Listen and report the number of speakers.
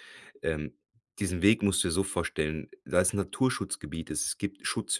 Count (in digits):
1